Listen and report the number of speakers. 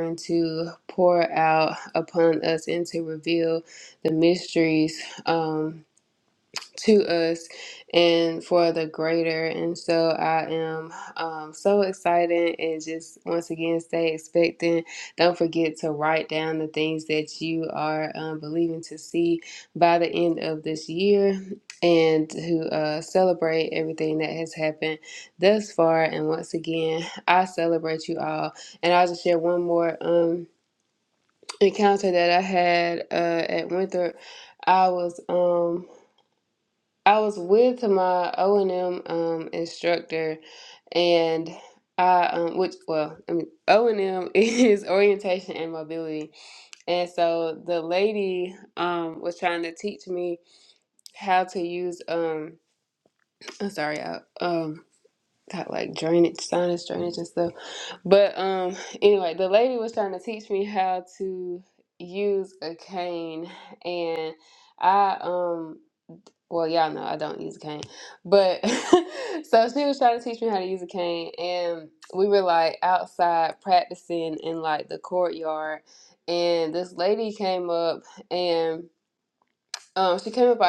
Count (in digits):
1